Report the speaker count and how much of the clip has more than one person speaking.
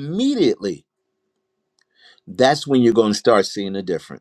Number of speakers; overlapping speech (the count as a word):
one, no overlap